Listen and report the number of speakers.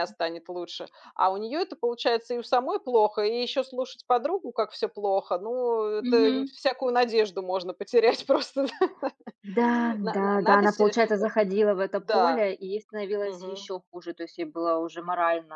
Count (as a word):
two